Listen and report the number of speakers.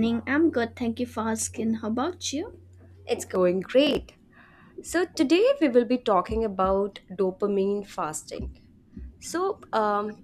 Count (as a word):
two